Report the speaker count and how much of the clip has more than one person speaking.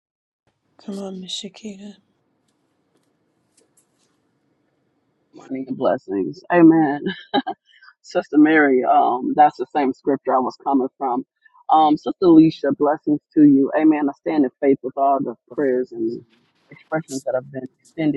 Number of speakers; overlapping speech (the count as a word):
two, no overlap